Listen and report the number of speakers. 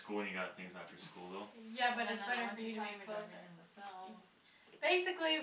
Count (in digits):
3